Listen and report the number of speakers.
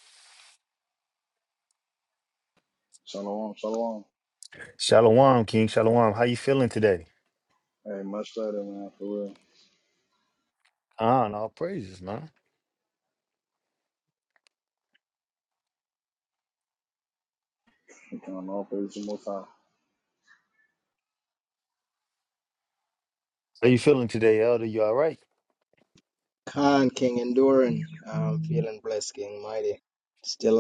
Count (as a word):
three